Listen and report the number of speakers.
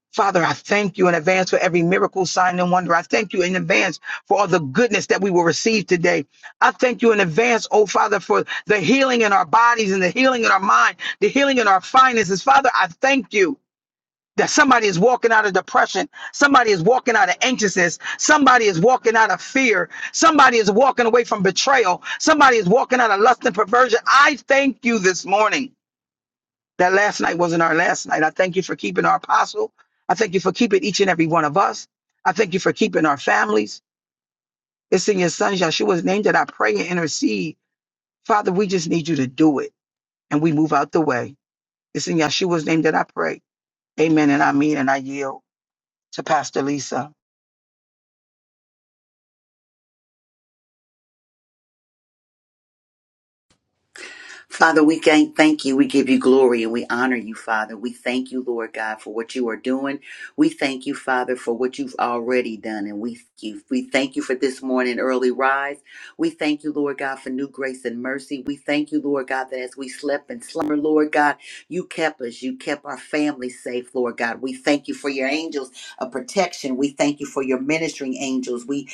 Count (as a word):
two